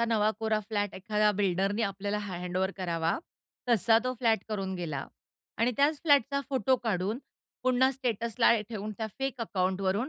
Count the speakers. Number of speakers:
1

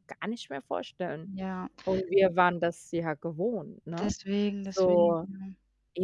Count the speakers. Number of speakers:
2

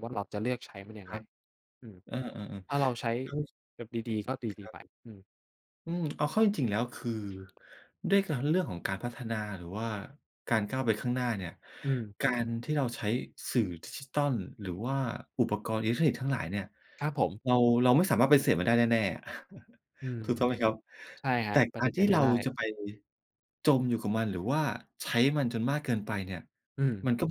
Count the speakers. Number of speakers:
2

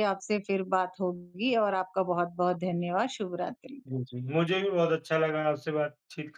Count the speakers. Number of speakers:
2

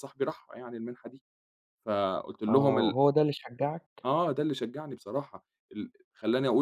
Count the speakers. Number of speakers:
2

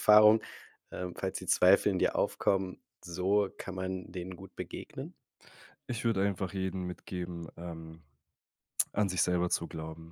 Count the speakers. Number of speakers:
2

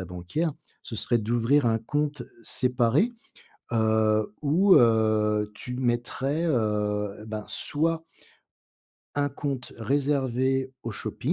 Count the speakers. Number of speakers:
1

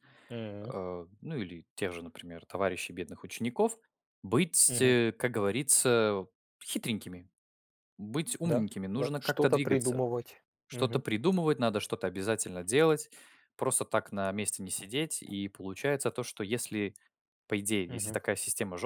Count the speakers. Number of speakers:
2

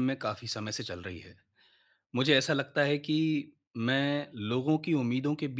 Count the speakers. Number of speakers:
1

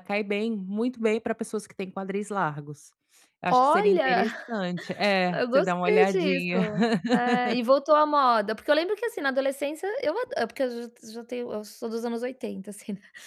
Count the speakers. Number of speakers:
2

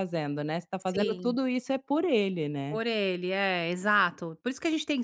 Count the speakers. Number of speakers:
2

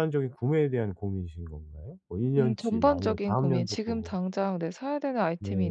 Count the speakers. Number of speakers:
2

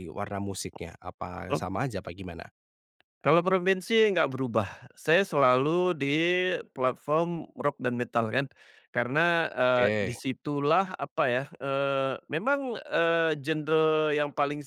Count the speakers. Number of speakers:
2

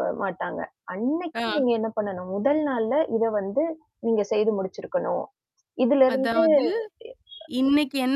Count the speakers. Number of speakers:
2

